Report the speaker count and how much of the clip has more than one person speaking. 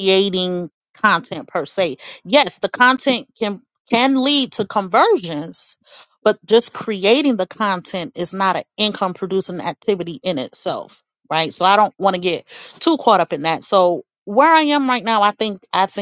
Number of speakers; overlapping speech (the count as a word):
one, no overlap